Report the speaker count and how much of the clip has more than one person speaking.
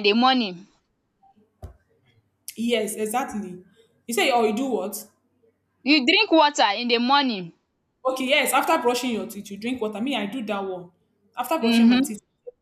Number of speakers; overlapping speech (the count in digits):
2, about 3%